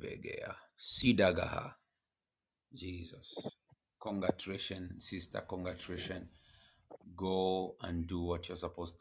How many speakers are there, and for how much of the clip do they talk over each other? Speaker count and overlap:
one, no overlap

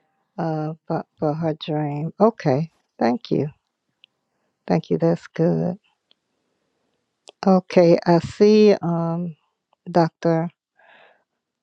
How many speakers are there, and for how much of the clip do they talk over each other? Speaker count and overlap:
one, no overlap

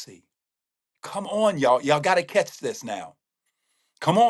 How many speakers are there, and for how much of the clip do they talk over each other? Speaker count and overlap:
one, no overlap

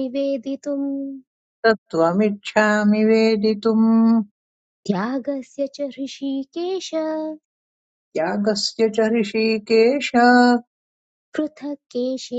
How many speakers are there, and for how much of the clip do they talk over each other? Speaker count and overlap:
two, no overlap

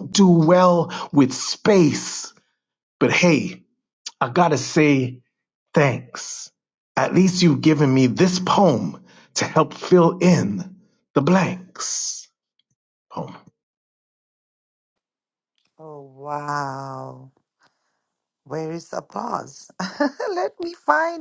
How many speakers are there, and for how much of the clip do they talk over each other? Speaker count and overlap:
two, no overlap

